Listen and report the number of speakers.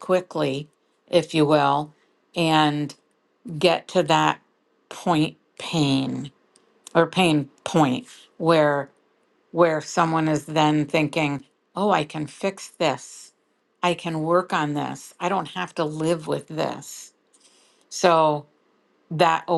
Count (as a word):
one